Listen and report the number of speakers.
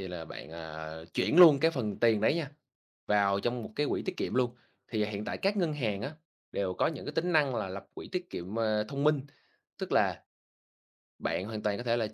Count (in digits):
1